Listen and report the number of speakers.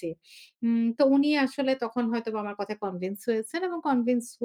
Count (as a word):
one